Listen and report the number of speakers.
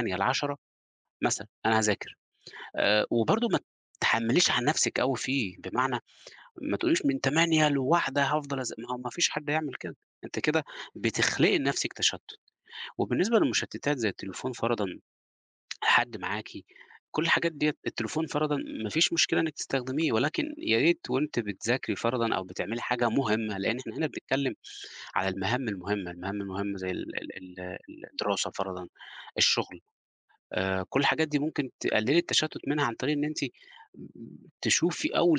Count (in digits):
1